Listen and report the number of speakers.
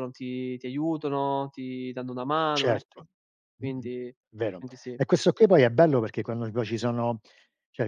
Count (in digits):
2